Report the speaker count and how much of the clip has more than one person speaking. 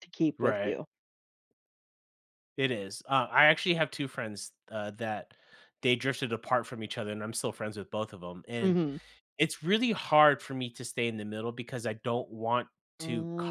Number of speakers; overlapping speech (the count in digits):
2, about 7%